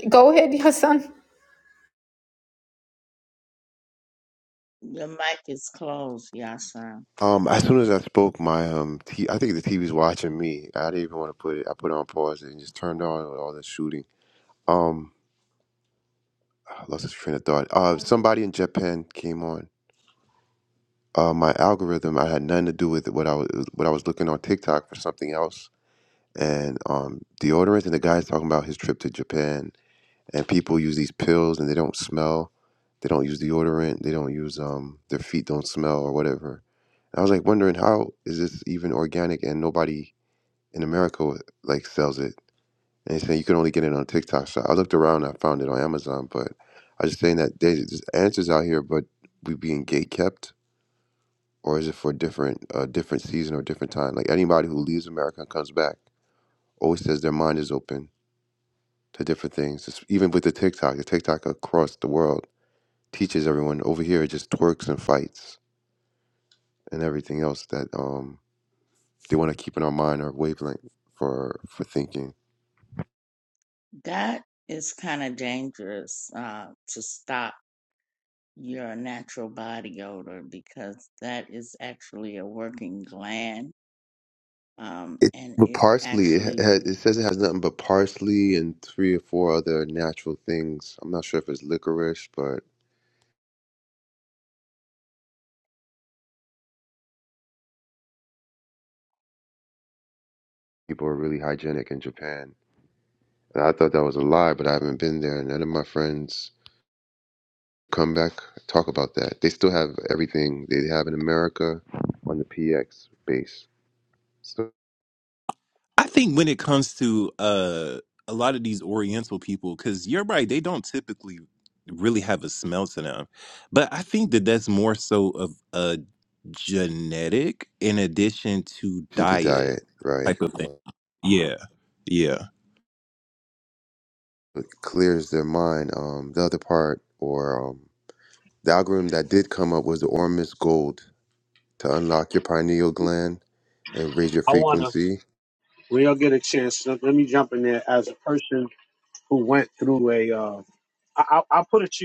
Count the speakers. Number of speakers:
five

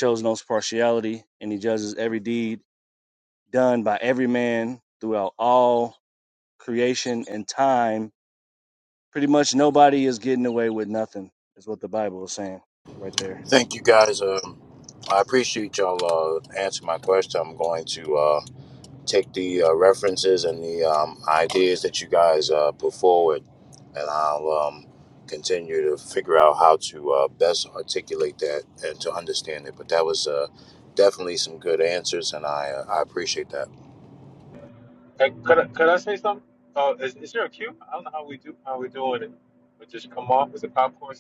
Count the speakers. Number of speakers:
three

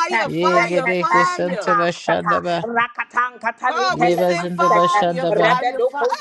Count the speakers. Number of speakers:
three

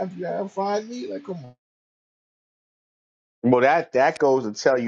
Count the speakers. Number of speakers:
two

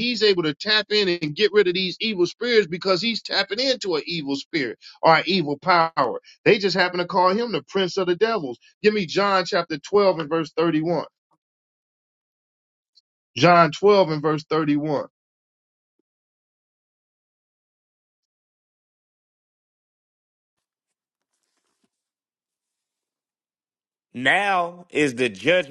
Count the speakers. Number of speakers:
two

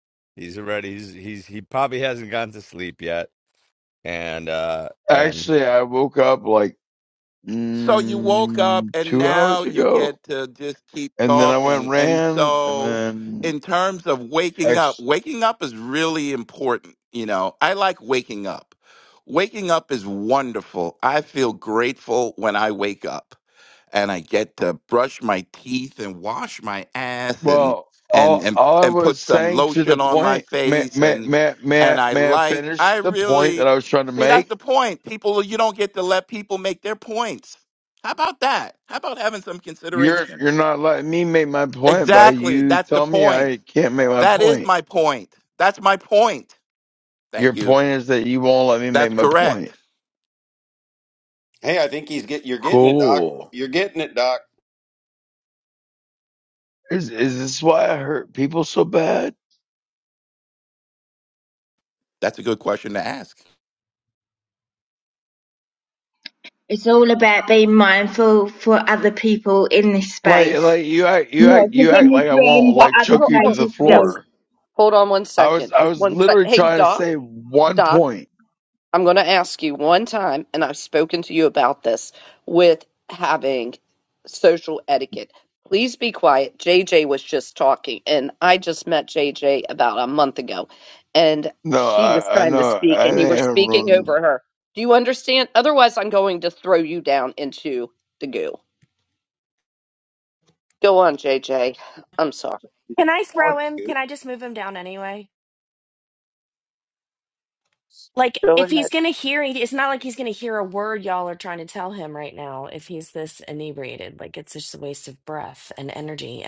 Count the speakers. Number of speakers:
seven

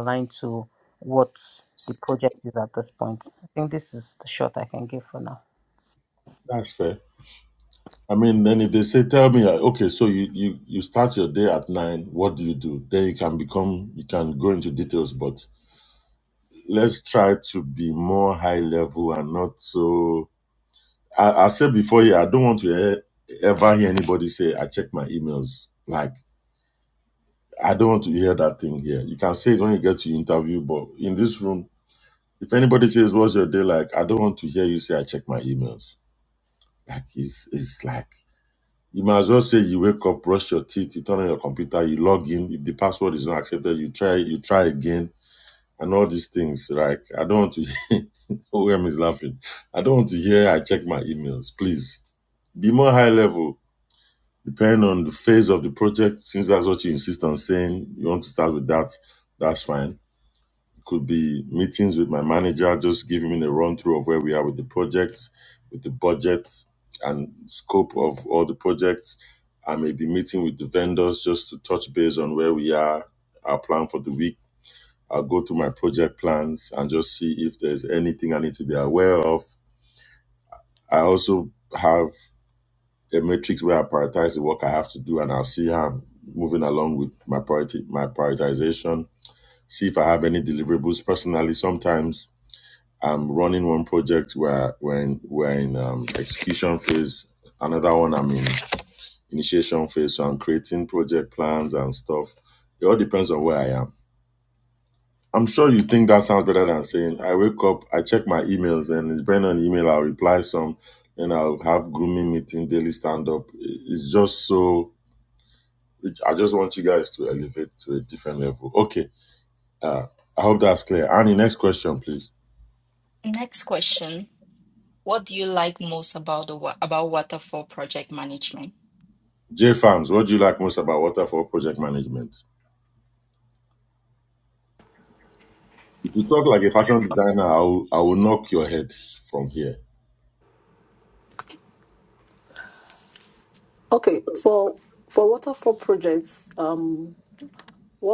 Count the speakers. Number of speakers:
four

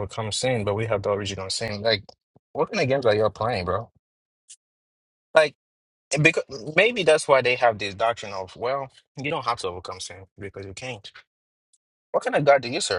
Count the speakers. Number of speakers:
one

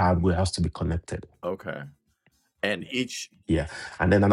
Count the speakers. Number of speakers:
two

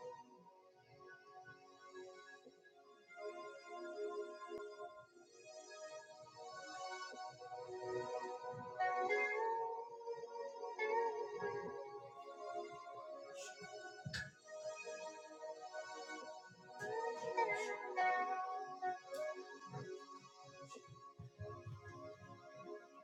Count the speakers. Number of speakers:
zero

